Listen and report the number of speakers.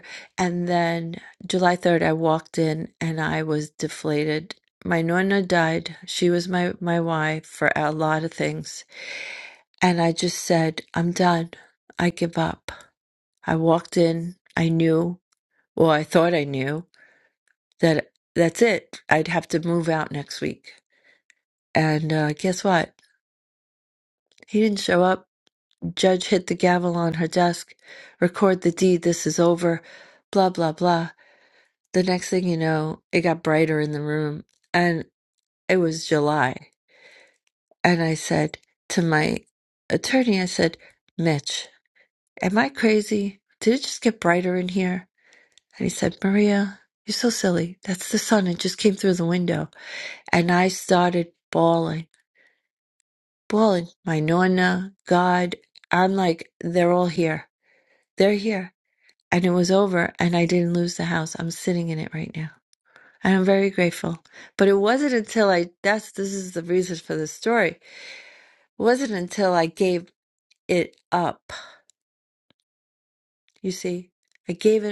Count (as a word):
one